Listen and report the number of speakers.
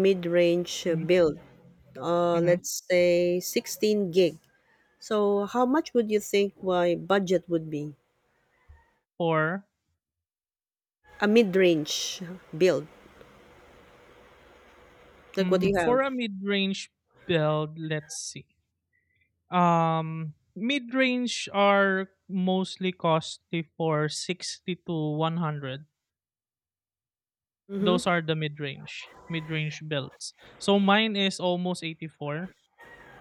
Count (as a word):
two